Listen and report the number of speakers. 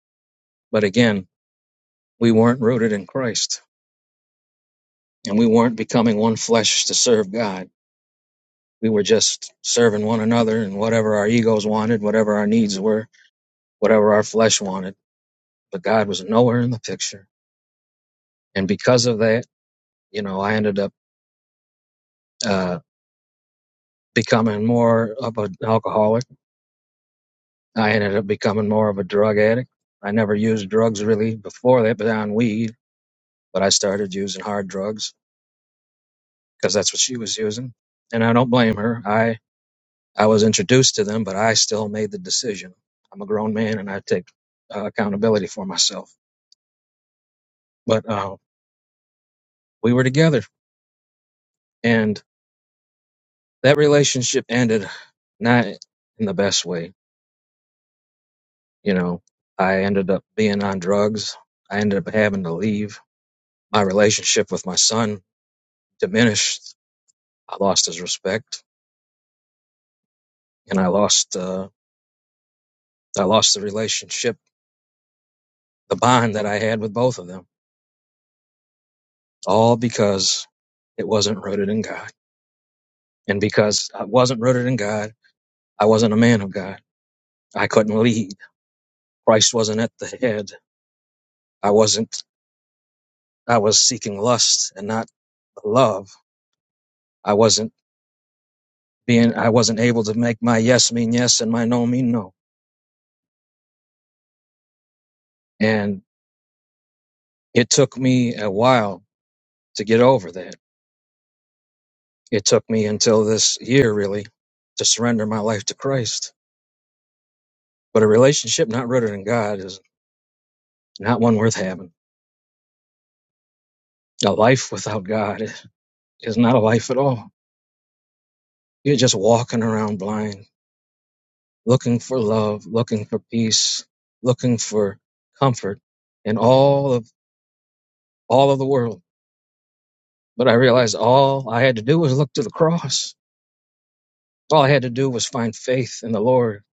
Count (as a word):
one